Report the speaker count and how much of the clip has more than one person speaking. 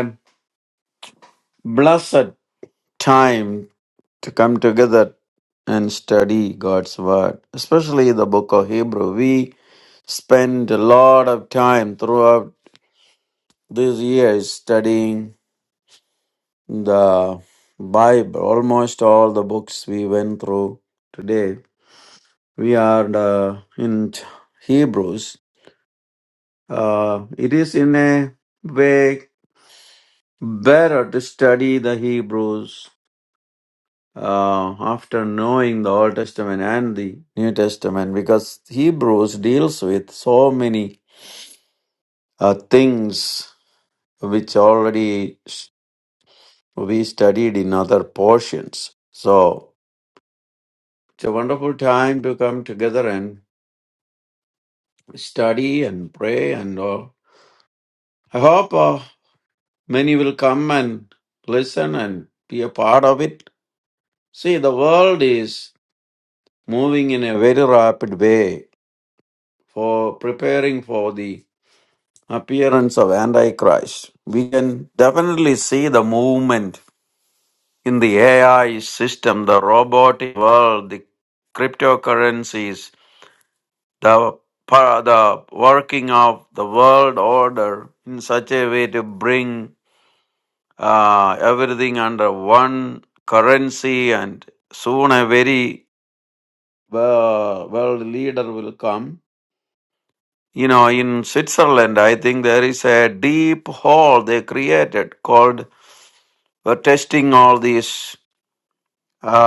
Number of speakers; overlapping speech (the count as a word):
one, no overlap